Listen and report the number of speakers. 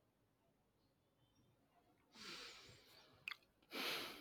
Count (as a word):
zero